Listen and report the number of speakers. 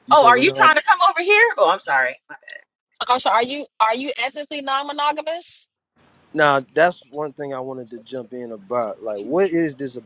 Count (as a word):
three